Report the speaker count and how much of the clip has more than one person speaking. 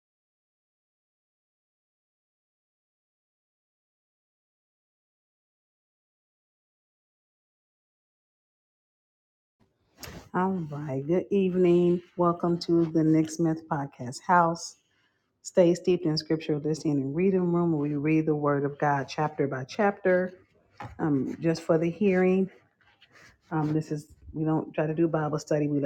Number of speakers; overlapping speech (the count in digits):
1, no overlap